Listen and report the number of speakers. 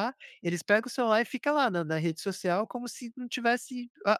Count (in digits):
1